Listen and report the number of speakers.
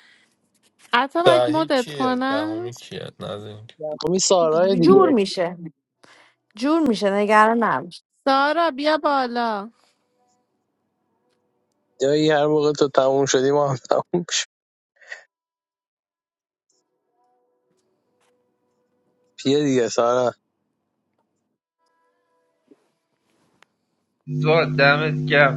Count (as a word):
five